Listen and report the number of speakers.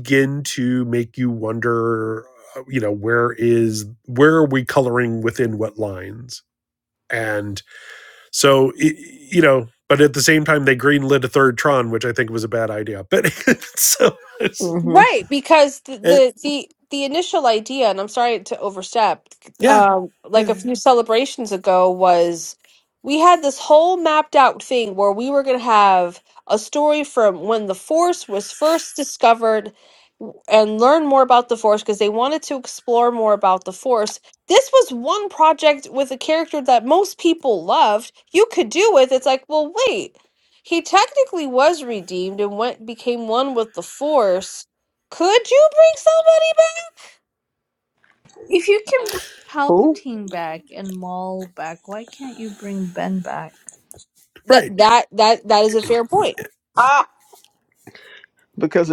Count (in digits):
4